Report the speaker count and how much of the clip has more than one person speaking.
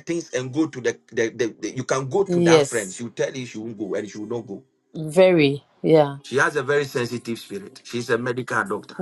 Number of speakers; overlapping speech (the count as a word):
two, about 5%